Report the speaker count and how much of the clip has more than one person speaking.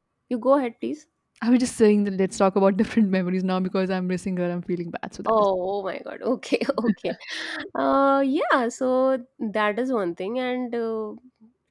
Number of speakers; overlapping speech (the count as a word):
two, about 2%